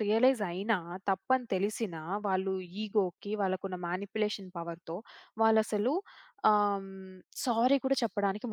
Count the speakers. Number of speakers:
1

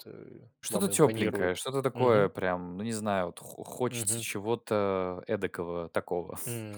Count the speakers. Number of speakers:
2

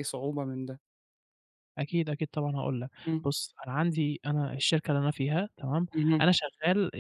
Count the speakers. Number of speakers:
2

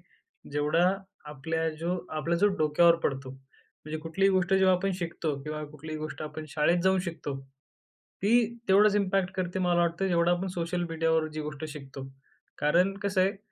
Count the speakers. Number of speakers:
1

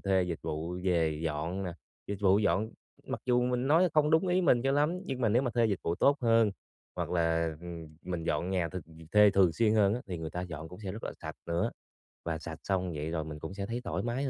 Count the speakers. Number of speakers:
1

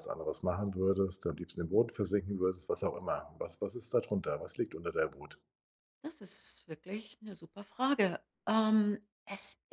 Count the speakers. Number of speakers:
2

